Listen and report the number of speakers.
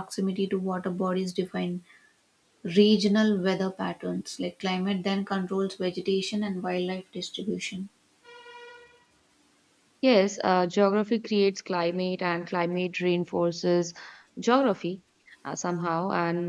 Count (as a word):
two